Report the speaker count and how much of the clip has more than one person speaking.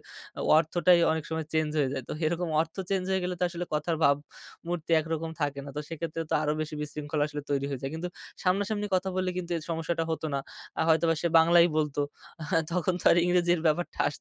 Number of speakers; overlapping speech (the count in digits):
1, no overlap